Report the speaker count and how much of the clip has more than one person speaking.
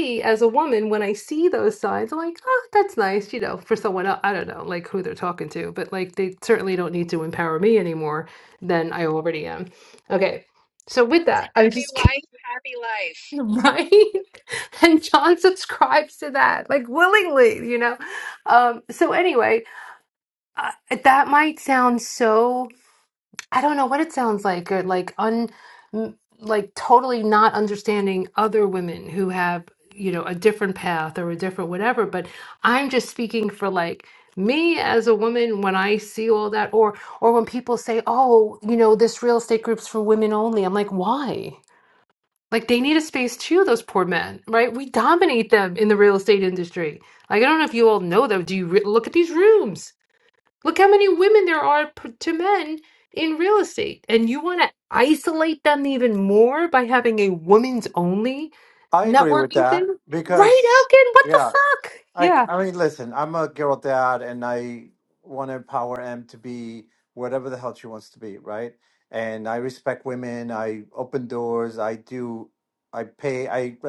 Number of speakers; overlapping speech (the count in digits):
3, about 3%